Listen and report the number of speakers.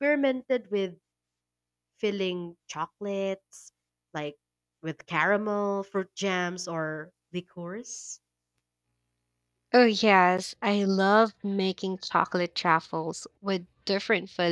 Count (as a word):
two